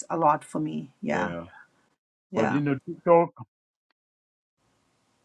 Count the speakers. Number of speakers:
two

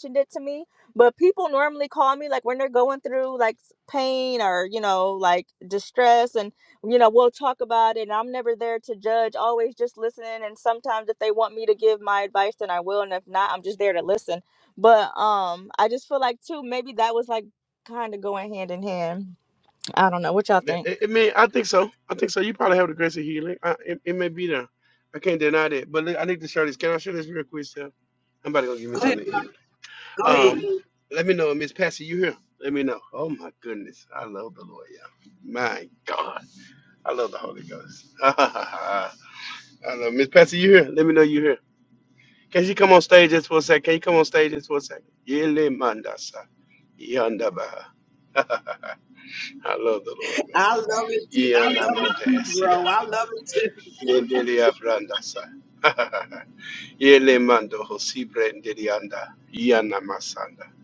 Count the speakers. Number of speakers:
three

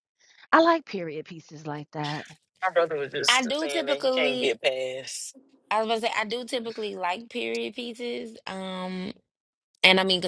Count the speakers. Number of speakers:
three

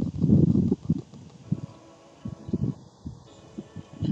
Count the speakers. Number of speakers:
zero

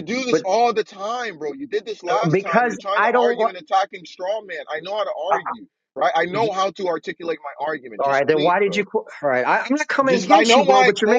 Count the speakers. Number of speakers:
two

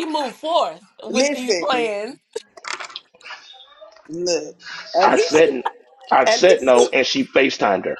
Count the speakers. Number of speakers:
three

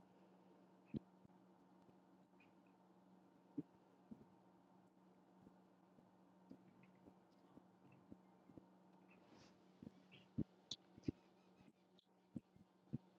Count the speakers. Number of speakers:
zero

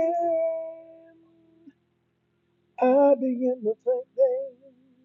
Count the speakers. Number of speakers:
one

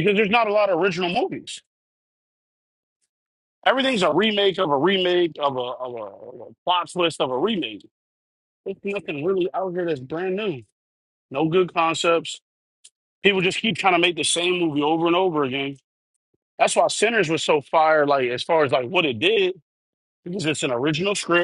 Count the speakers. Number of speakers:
one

